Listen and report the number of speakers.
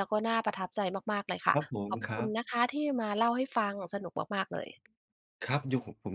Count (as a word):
two